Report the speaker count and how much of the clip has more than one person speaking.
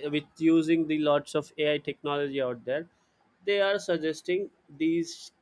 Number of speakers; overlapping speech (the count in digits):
1, no overlap